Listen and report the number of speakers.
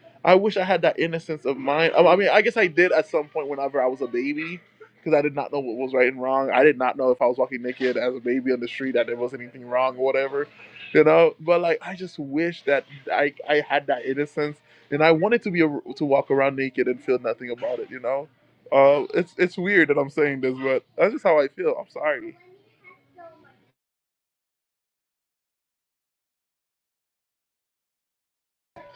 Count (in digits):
1